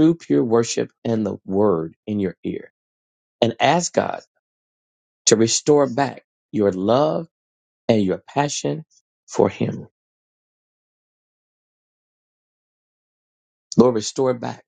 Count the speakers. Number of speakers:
one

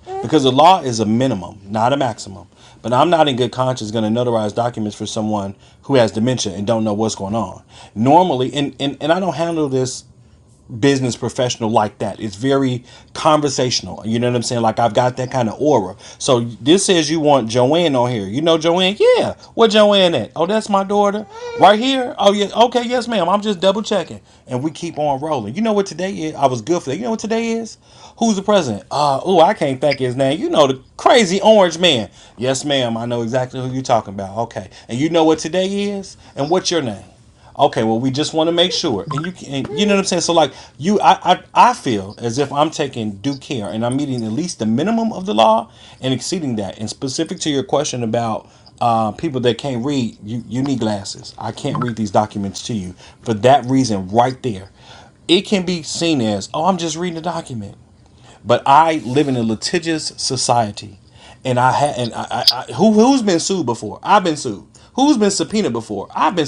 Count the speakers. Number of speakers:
one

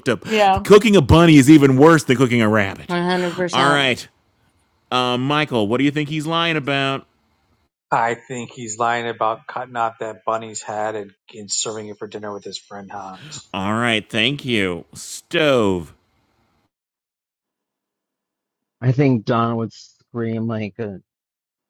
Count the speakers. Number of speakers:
four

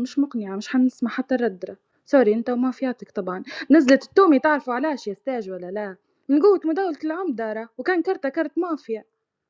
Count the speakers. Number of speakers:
one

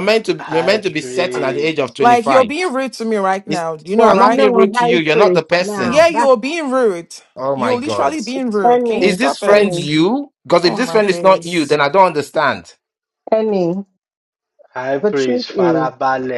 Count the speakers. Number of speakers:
four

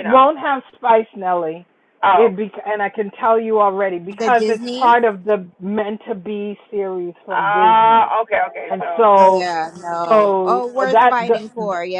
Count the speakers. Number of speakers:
three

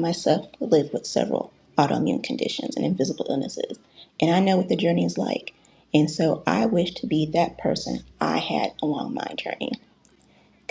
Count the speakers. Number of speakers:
one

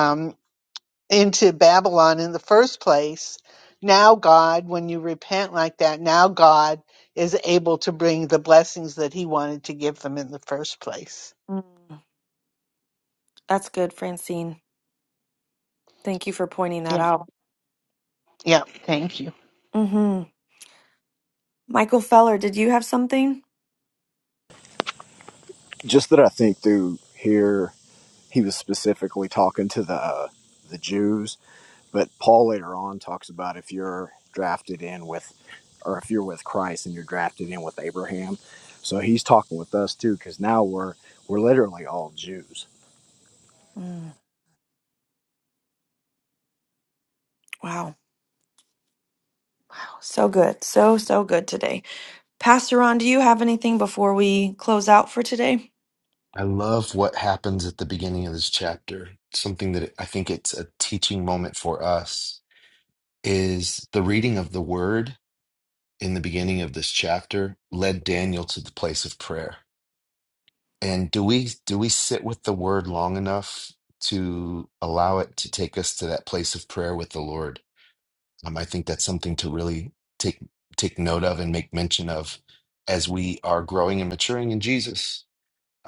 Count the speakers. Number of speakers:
four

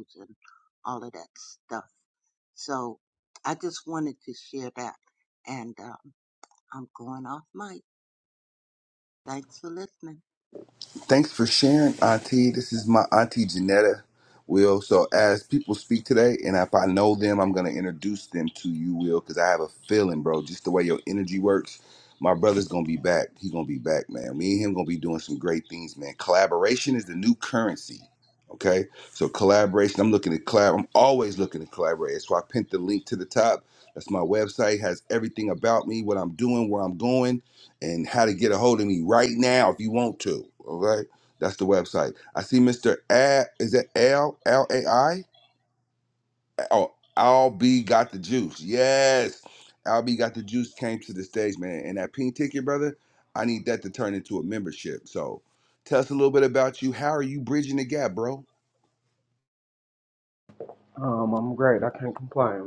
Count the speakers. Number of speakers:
three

